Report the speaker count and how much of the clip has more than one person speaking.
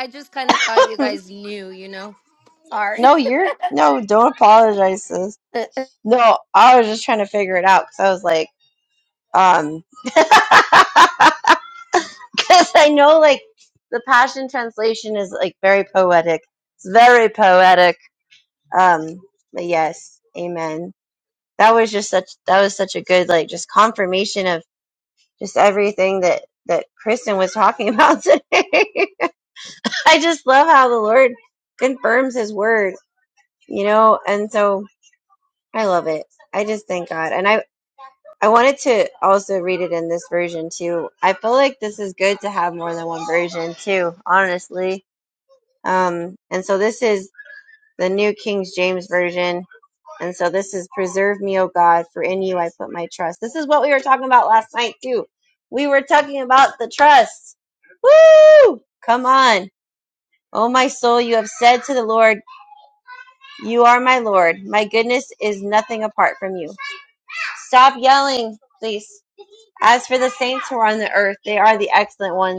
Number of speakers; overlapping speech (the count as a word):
two, about 1%